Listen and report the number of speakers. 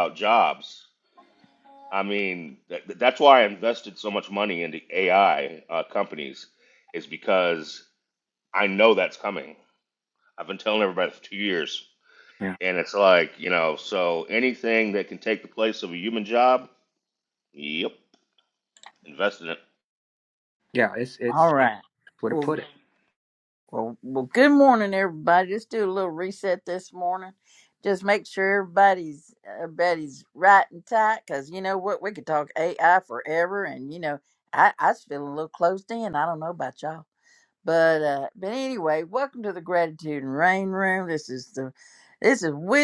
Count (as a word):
three